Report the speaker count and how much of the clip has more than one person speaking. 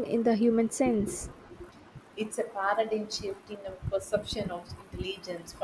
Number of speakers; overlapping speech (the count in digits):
2, no overlap